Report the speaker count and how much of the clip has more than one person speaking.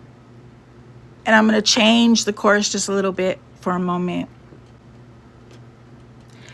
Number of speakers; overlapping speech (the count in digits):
1, no overlap